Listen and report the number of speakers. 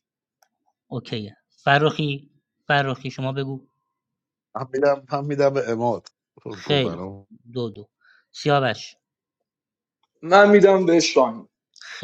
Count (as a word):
three